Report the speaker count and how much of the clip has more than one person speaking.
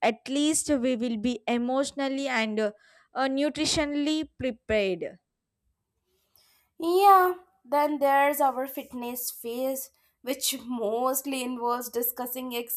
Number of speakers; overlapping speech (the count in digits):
2, no overlap